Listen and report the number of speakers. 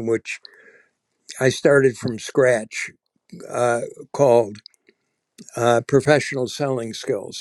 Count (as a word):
one